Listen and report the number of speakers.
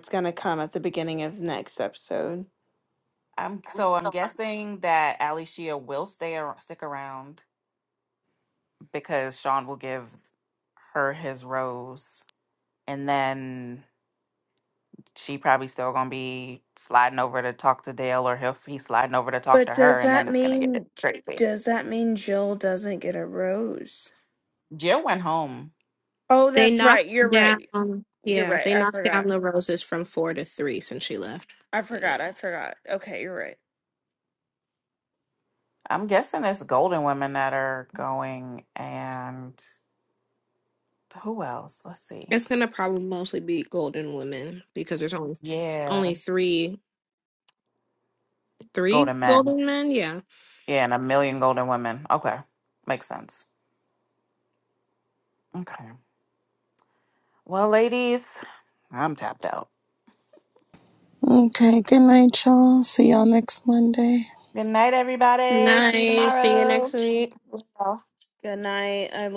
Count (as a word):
four